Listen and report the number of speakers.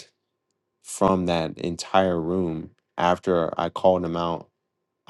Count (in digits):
1